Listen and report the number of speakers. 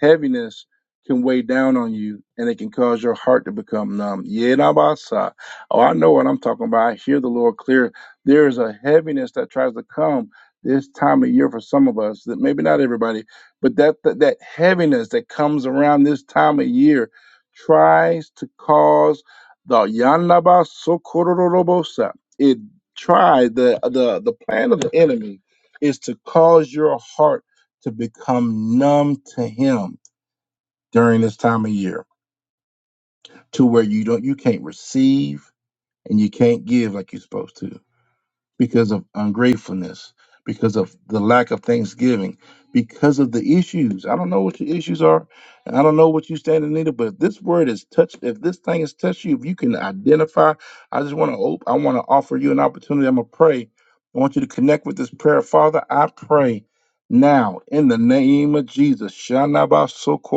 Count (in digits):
1